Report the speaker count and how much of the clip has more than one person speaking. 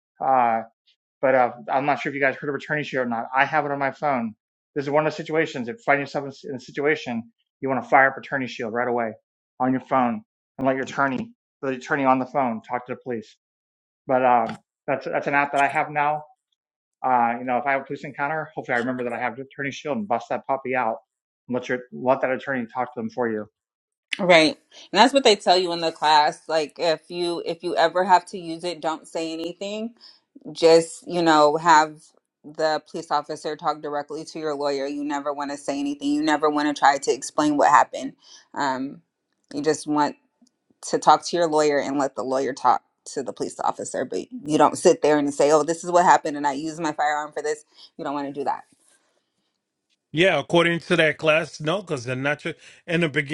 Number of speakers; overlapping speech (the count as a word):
three, no overlap